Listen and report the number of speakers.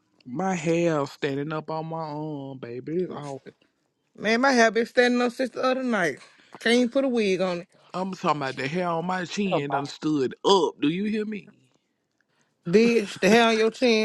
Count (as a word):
two